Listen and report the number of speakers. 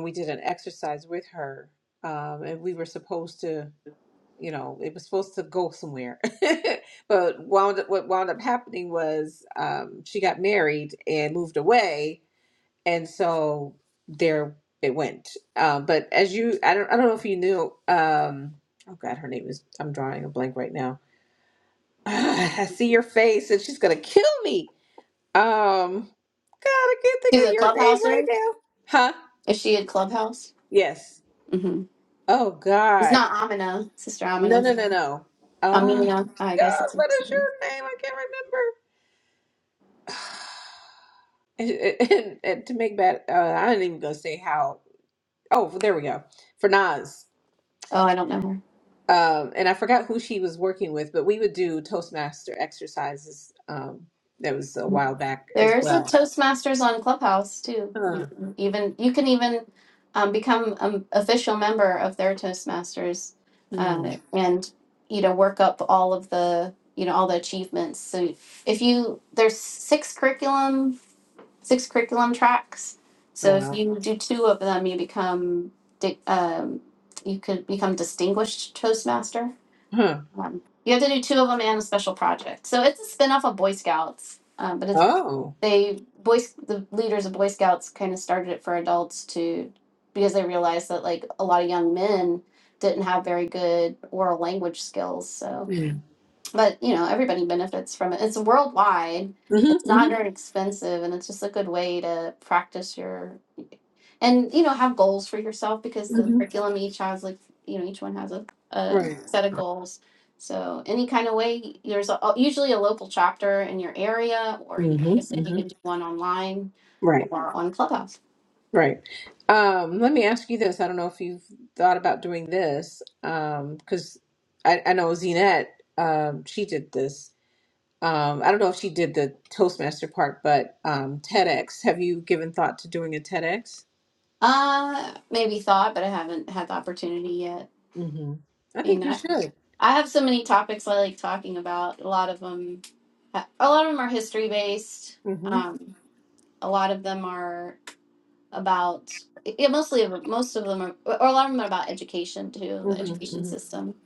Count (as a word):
two